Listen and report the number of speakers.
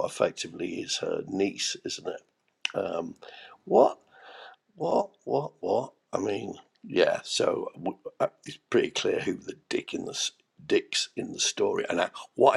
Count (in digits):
1